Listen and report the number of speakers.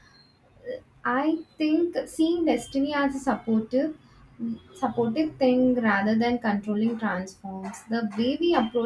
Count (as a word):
one